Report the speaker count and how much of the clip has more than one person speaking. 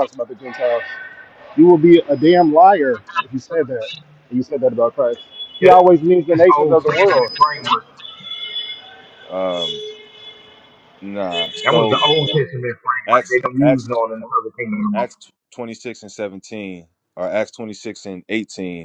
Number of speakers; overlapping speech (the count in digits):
3, about 12%